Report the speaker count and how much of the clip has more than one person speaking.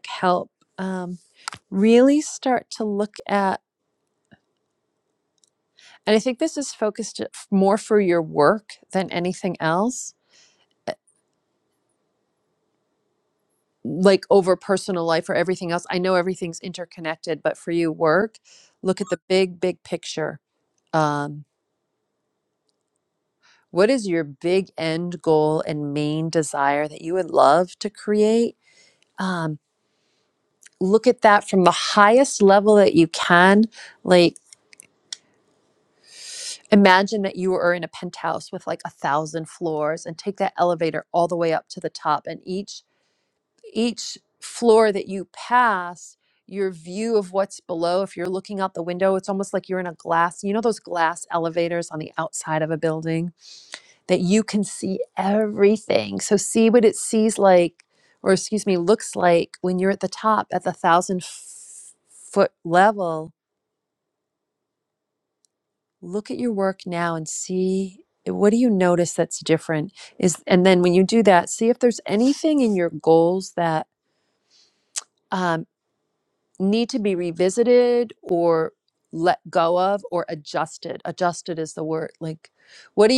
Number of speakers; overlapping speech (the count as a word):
one, no overlap